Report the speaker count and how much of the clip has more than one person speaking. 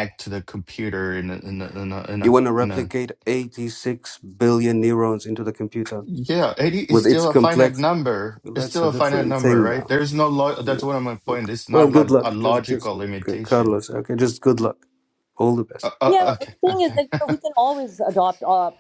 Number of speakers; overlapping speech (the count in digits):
3, about 35%